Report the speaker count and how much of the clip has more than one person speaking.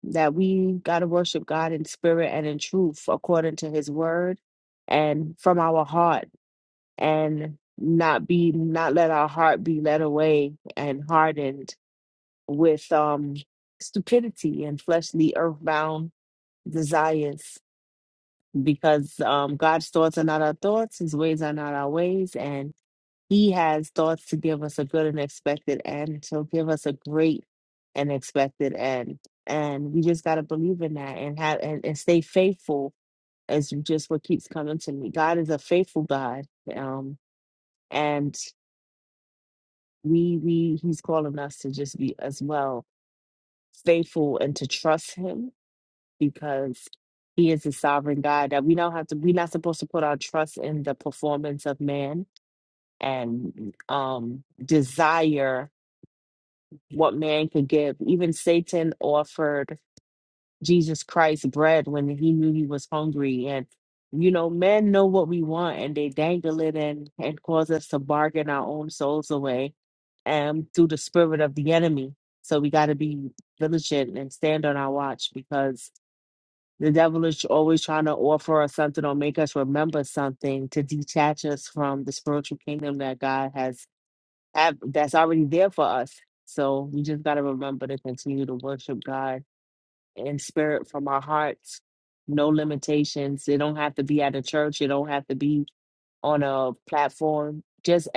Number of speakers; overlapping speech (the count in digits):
1, no overlap